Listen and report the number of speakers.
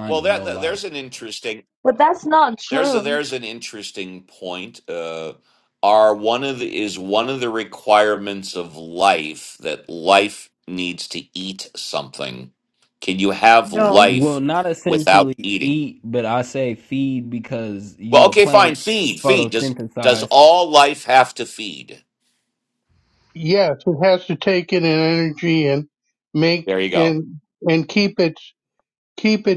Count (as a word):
four